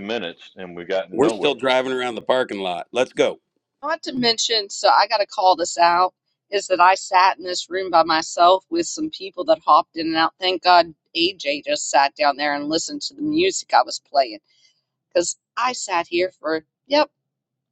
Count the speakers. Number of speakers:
3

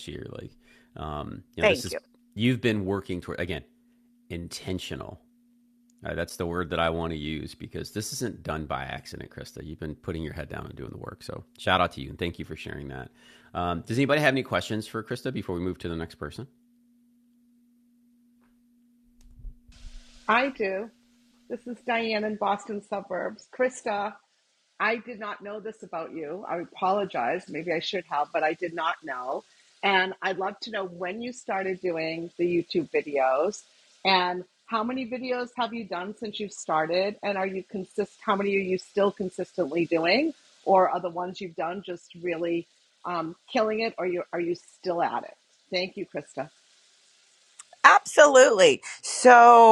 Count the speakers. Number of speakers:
3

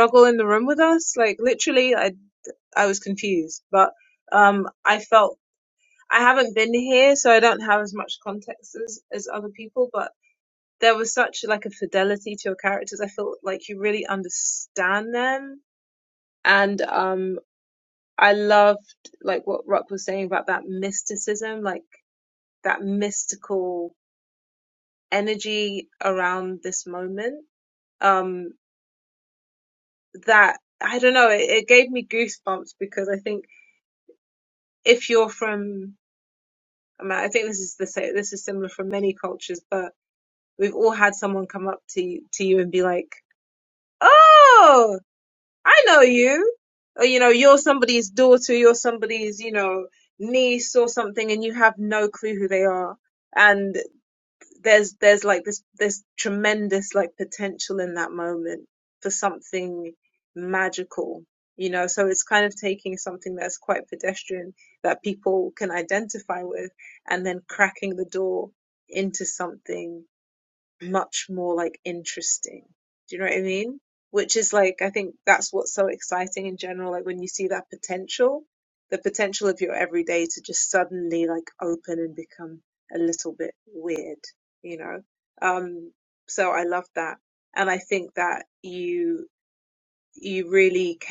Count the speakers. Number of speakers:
1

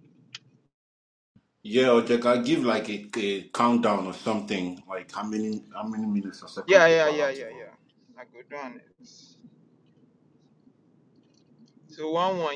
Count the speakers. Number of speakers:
2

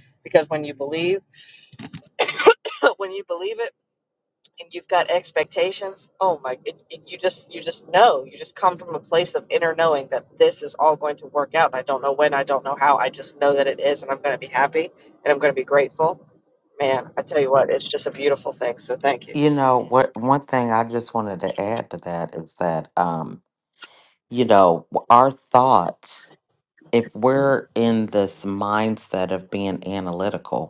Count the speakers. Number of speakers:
2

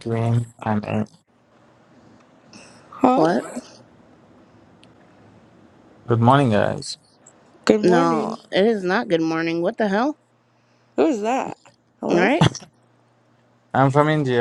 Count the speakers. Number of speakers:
3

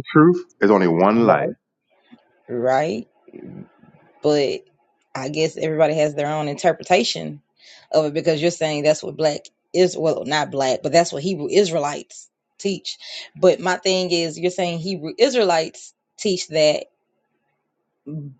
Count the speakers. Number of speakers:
2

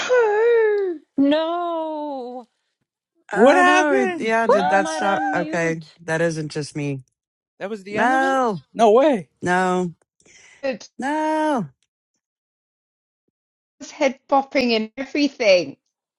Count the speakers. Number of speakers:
4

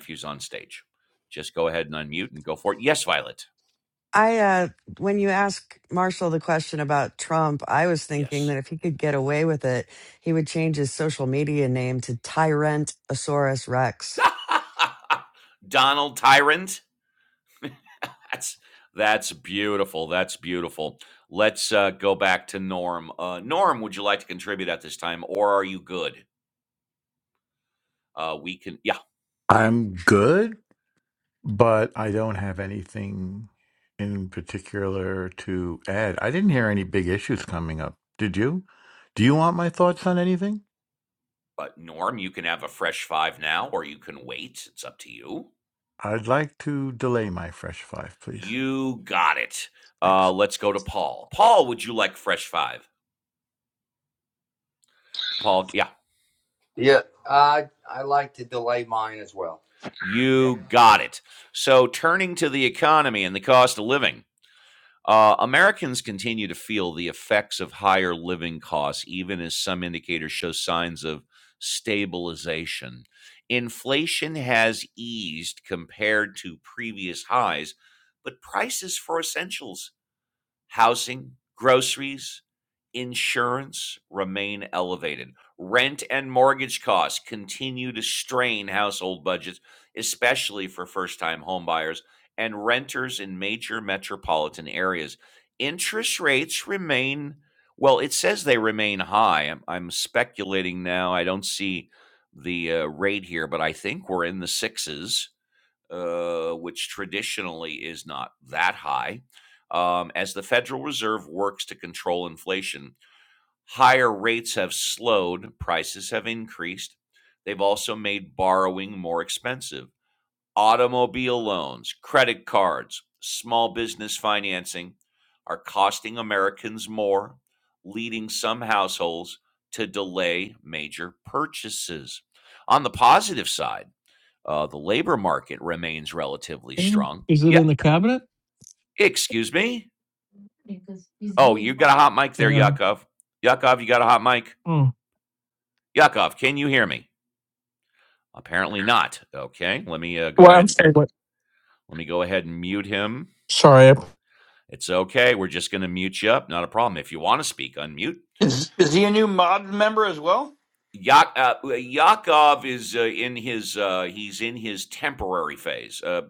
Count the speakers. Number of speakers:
6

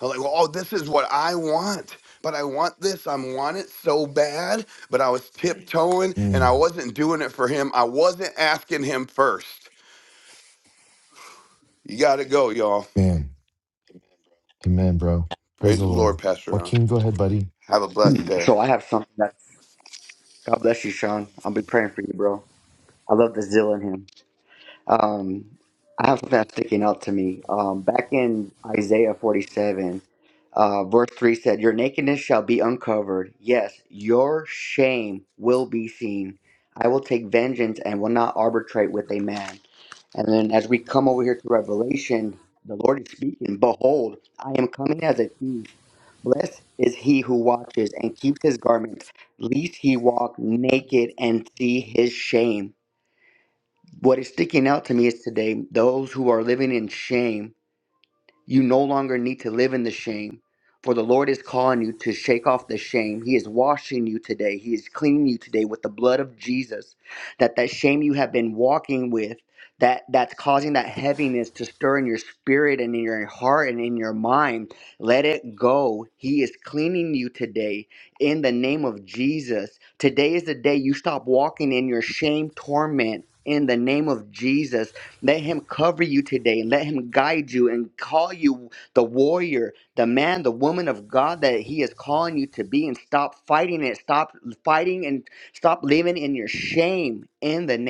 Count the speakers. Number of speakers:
3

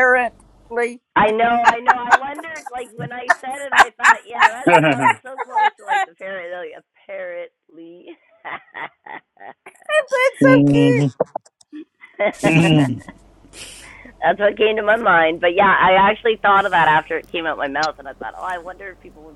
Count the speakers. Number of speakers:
3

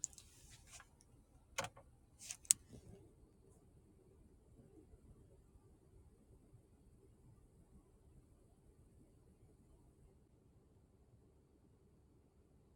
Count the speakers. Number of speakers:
0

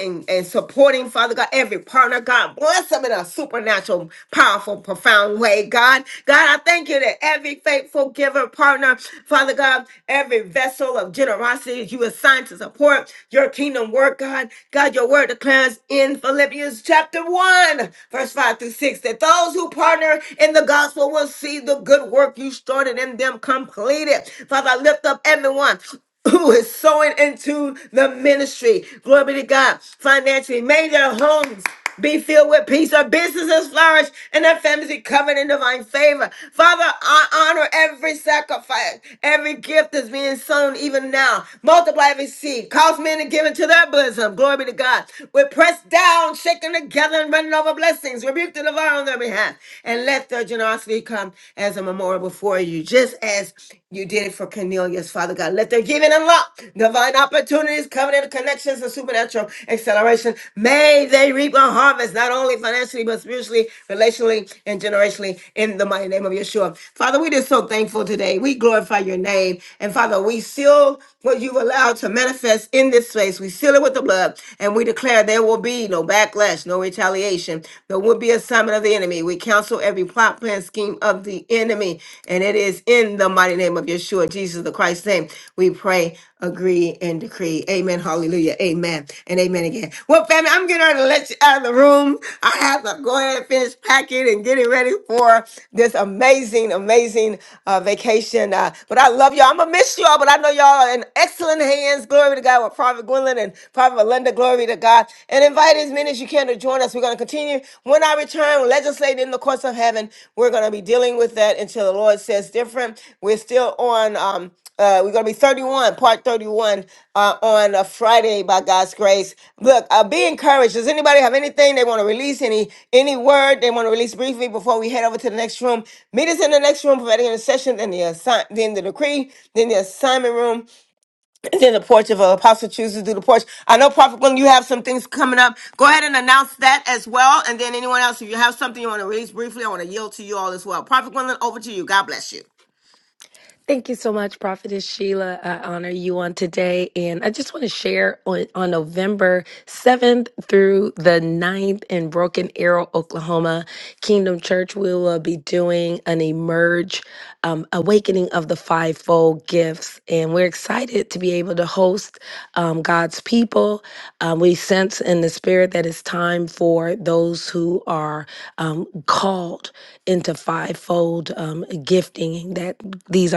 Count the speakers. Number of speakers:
2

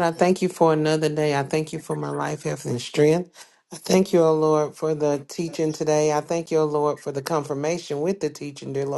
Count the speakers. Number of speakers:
1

